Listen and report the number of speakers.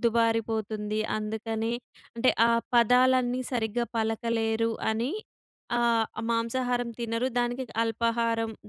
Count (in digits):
1